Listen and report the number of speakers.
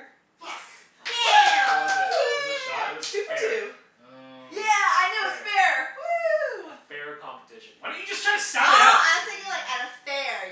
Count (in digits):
4